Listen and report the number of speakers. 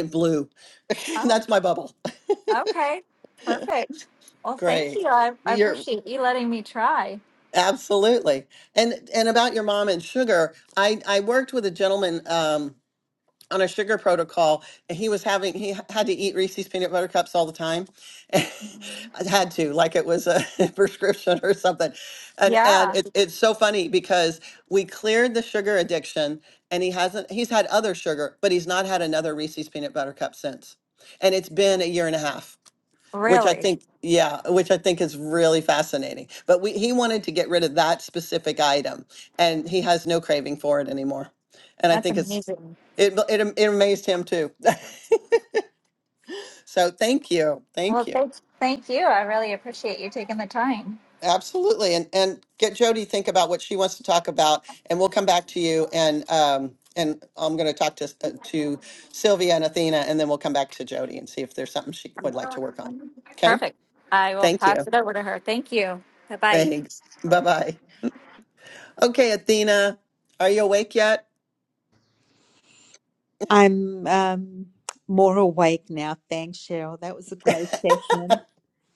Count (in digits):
3